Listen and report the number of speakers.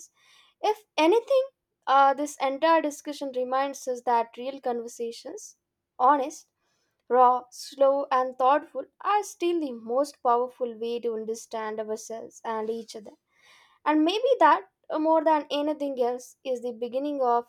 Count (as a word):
one